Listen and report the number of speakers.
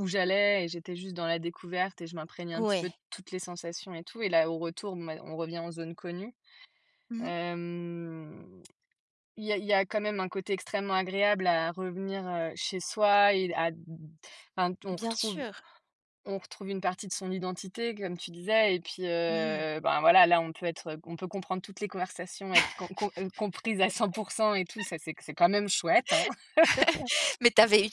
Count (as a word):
two